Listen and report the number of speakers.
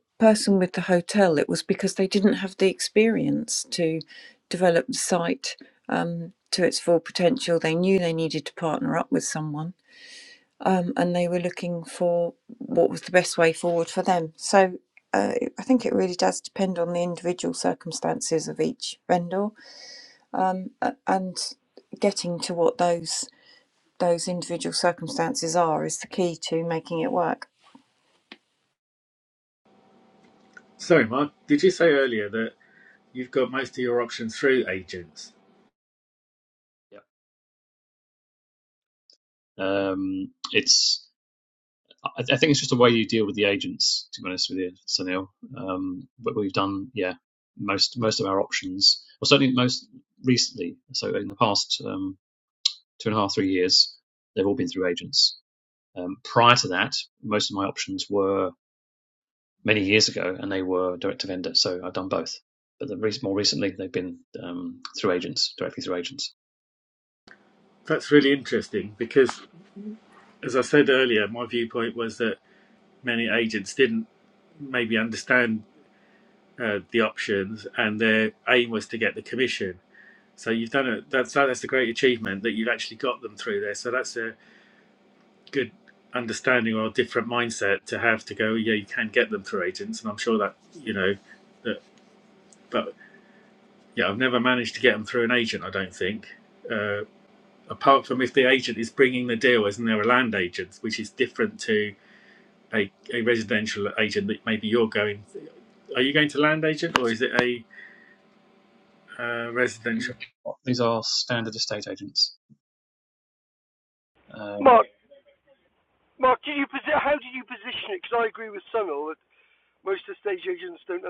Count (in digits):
4